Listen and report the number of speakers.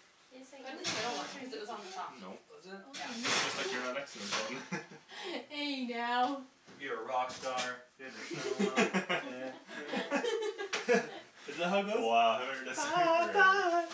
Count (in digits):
4